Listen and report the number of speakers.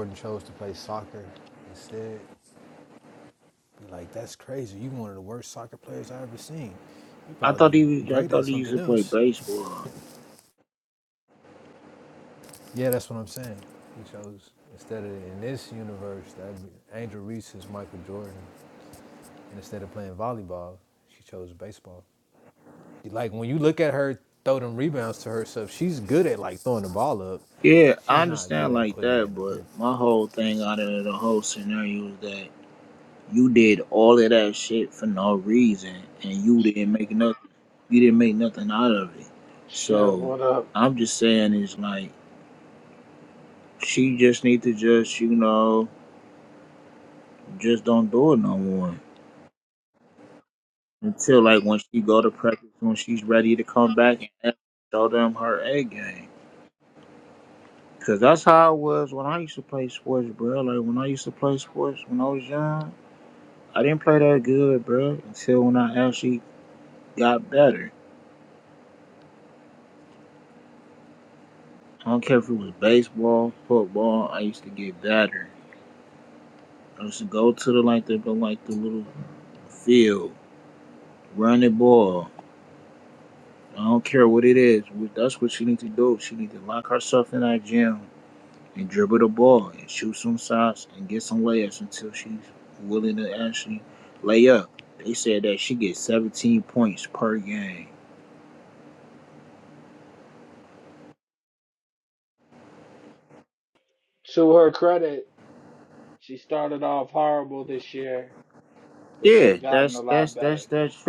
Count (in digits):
3